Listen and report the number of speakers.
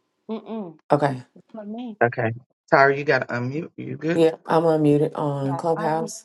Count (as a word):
three